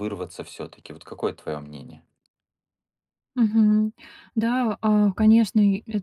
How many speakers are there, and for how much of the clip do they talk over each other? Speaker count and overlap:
two, no overlap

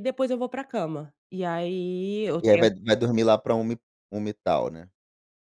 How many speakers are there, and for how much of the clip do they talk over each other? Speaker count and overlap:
two, about 5%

